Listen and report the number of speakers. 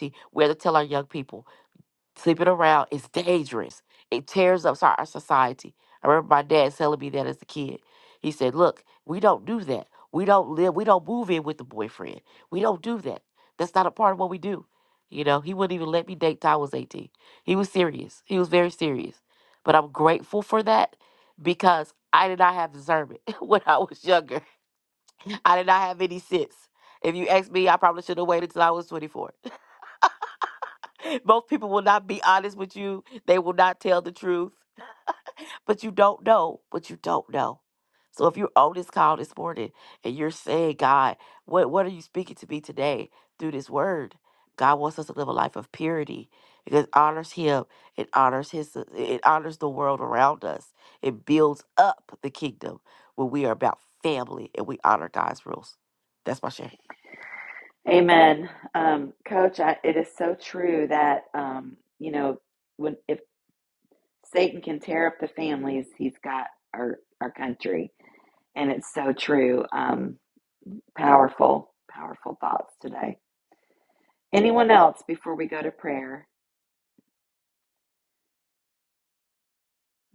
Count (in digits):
2